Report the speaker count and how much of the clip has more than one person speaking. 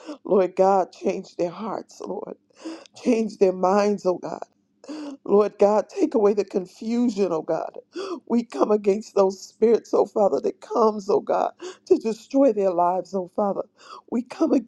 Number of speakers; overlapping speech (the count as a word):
one, no overlap